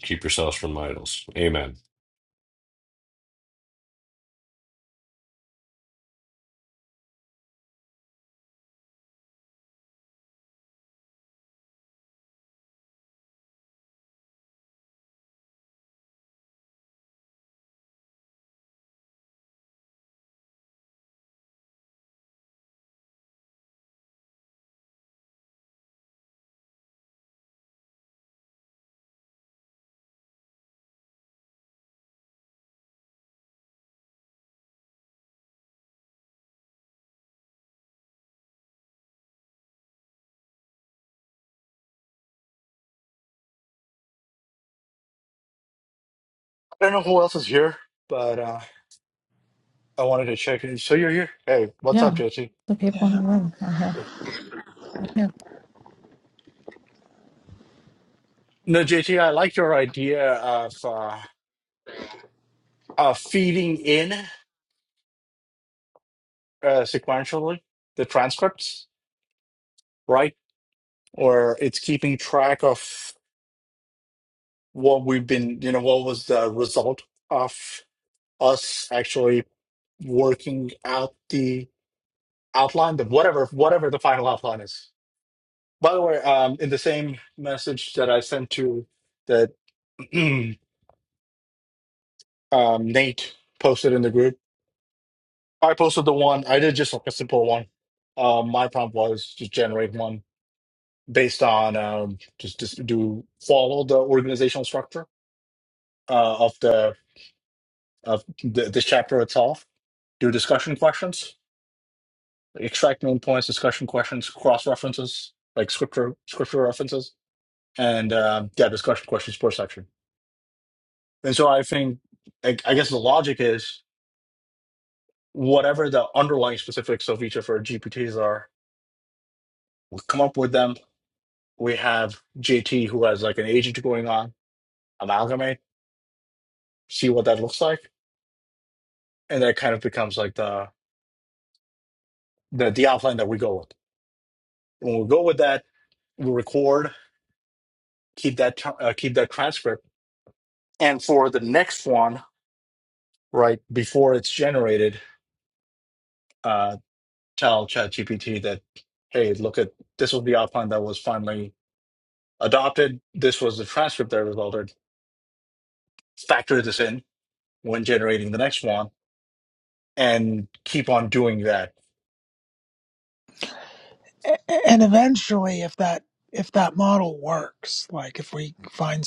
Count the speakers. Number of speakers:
four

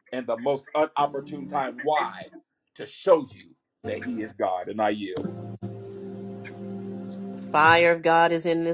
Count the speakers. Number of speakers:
two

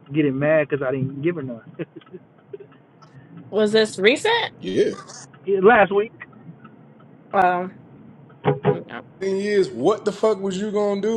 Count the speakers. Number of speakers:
three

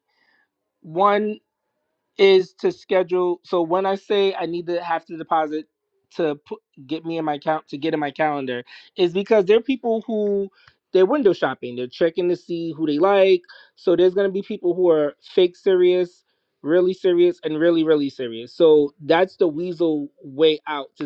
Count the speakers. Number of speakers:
one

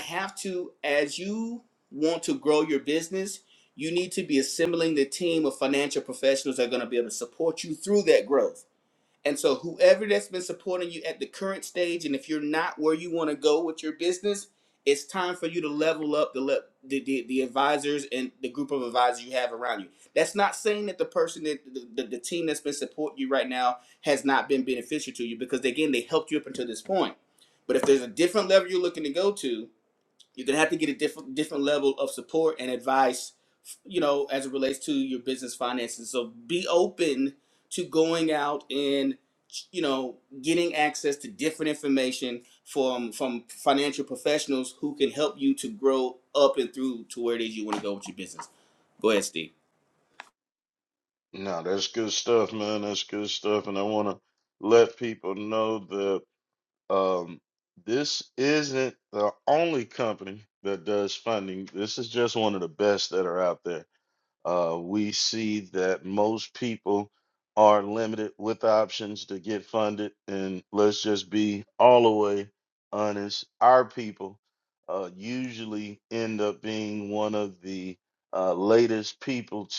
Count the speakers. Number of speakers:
two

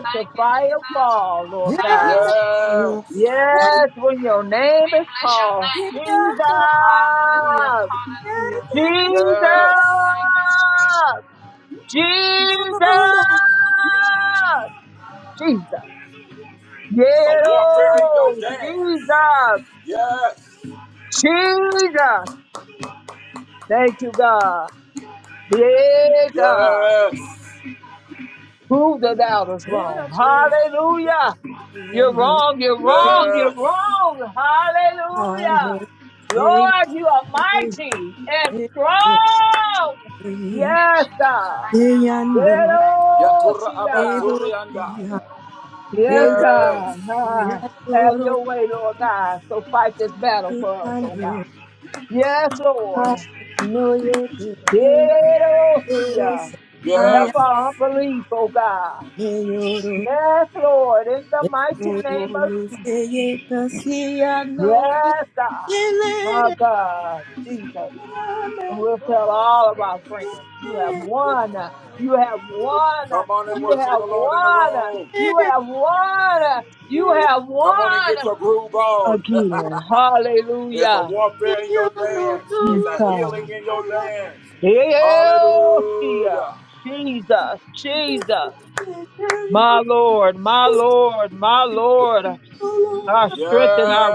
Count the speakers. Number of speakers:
four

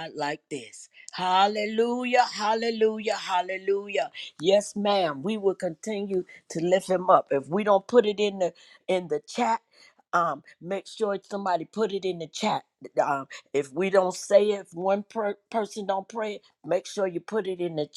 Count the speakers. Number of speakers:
one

